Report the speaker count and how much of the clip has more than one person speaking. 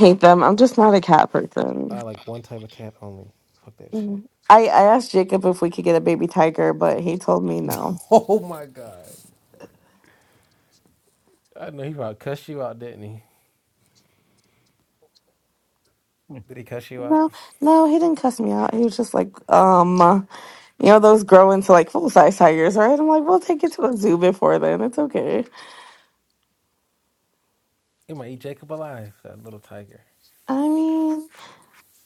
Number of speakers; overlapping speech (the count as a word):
two, about 2%